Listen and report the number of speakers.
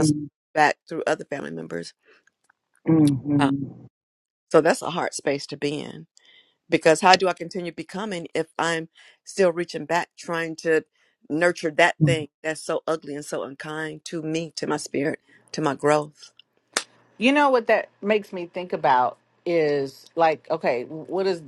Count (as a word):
three